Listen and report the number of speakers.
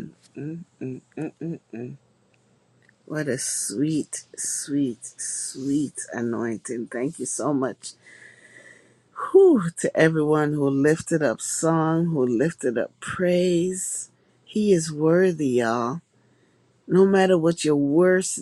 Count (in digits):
1